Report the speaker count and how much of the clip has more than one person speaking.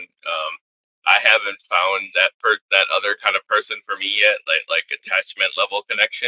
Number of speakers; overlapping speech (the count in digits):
1, no overlap